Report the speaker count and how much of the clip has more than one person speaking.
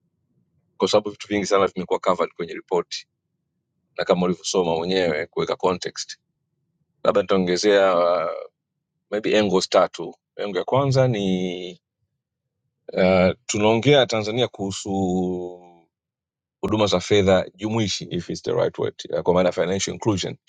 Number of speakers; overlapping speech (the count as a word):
one, no overlap